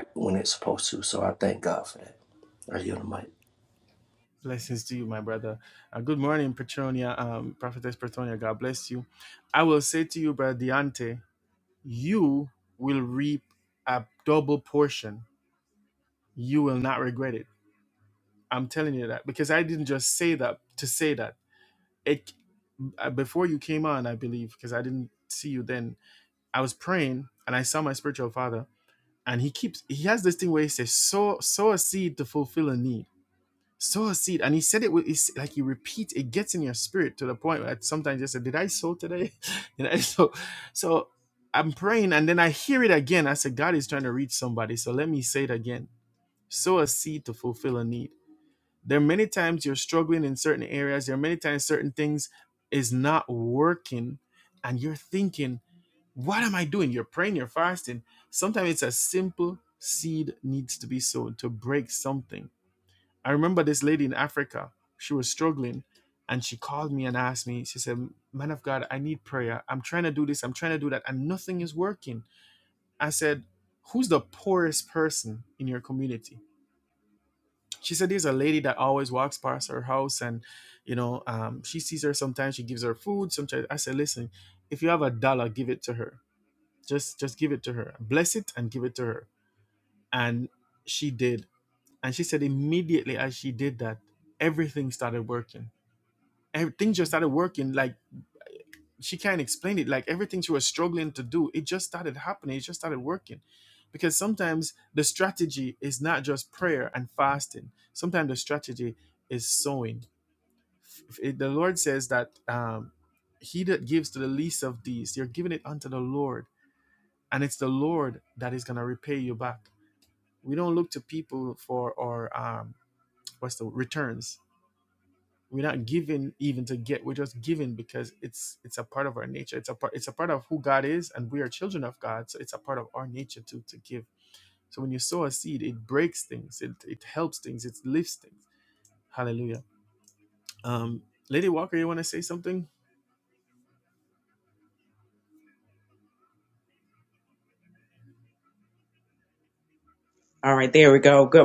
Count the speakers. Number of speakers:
3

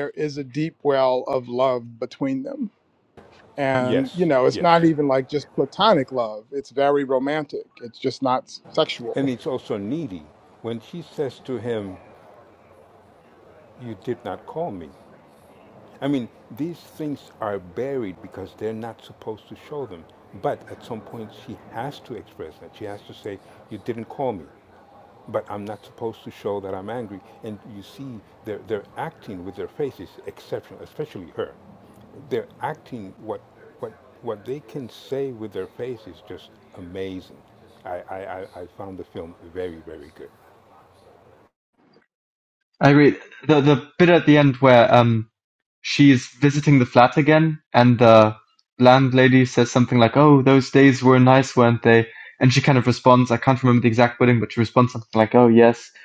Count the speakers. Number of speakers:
3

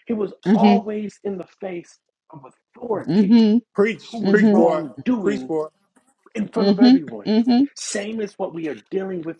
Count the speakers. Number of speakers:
3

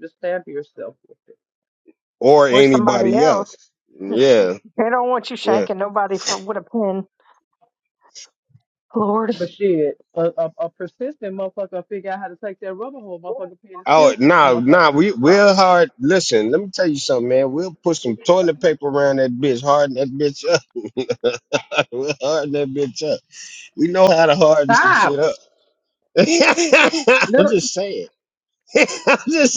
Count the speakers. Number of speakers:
3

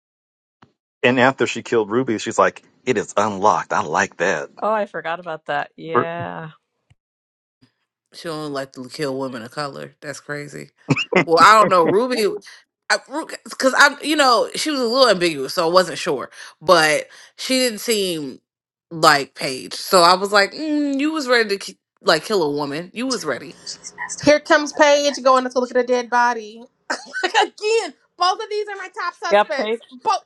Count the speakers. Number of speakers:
4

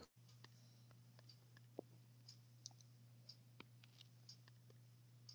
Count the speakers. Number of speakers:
0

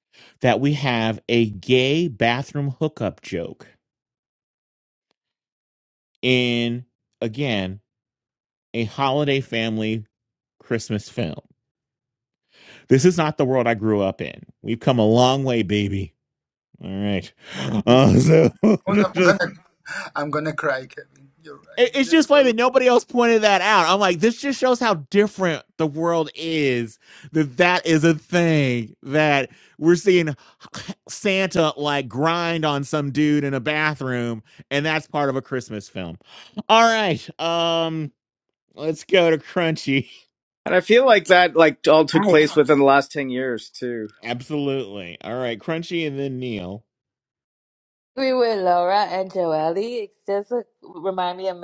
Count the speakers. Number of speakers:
4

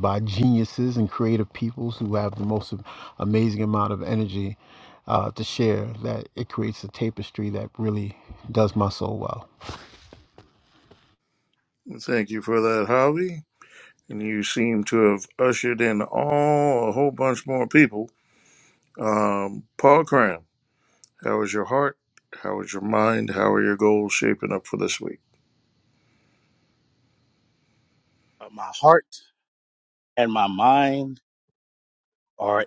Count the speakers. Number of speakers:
3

